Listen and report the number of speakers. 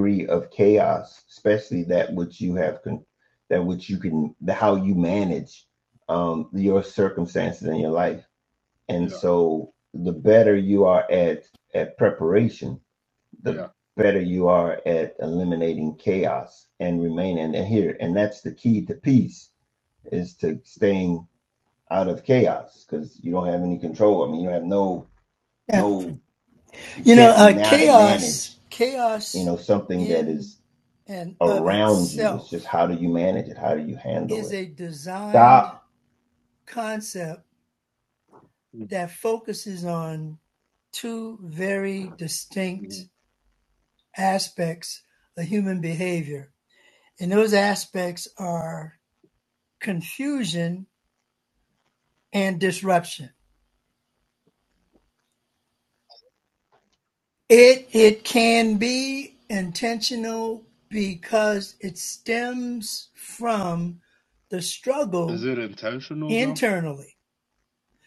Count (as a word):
three